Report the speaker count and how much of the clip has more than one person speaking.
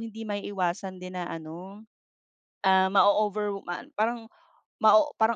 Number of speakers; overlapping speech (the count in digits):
1, no overlap